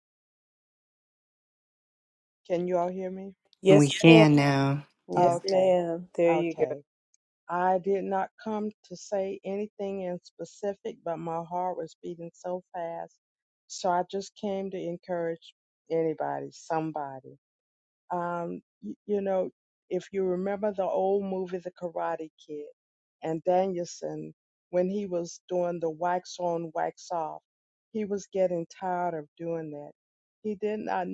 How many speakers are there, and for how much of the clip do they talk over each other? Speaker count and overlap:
3, about 5%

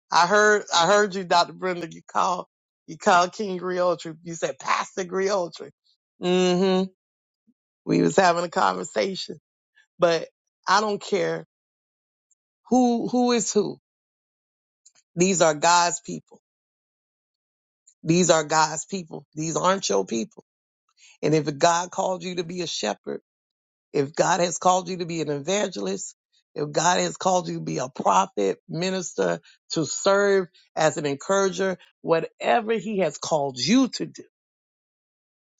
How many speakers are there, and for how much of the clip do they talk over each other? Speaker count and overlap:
1, no overlap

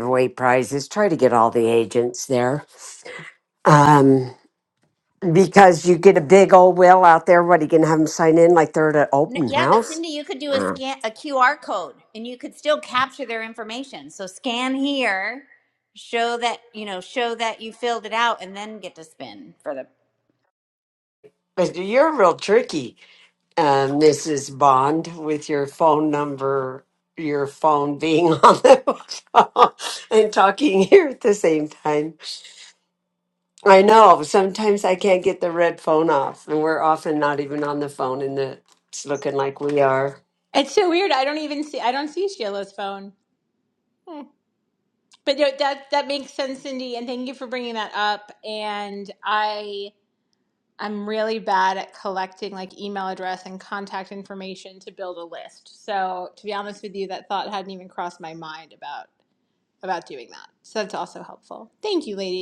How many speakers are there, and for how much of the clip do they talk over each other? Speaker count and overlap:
3, about 1%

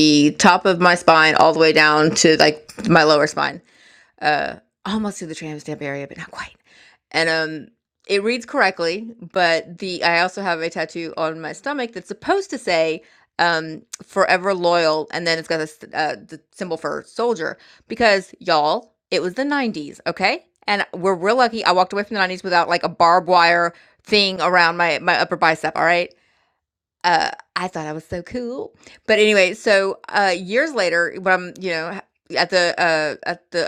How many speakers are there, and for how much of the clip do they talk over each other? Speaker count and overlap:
1, no overlap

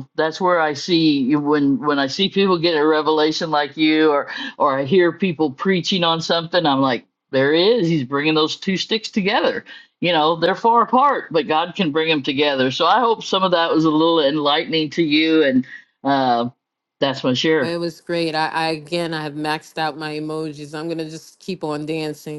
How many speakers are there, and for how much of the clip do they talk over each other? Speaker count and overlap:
2, under 1%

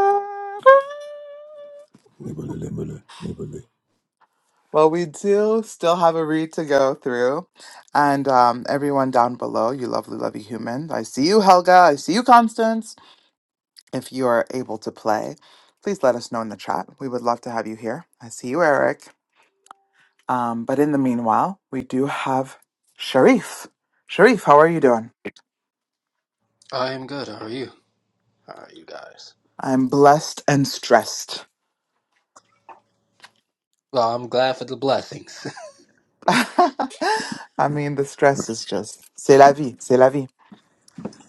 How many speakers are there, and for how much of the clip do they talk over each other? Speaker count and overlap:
3, no overlap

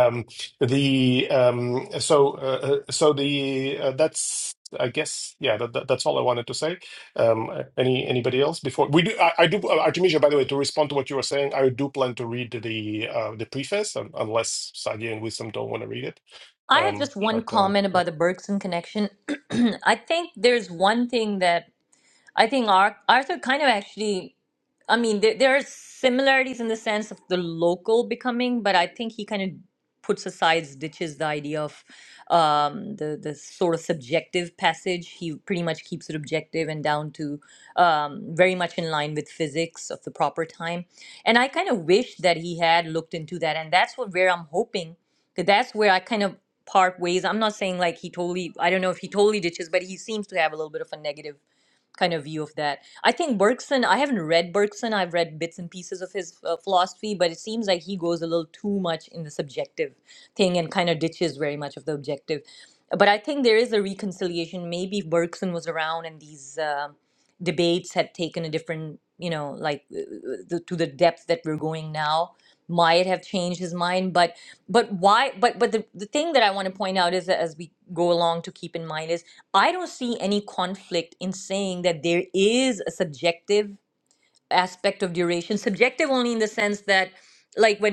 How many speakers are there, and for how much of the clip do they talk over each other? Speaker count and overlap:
2, about 1%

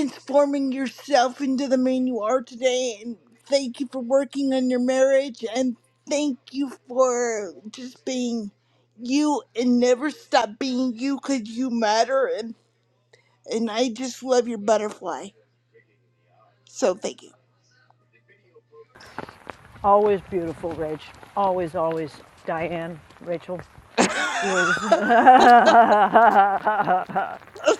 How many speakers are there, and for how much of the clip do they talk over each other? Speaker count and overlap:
2, about 1%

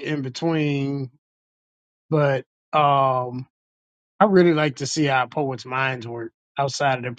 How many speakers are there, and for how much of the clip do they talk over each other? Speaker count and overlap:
1, no overlap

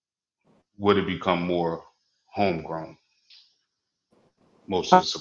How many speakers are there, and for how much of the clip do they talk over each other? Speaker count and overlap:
1, no overlap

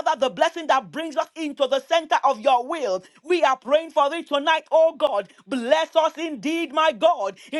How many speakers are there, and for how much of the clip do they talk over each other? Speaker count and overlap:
1, no overlap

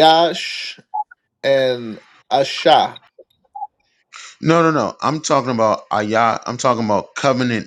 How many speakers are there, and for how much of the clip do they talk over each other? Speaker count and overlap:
2, no overlap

